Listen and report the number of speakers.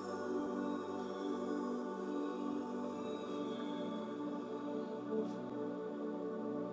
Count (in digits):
0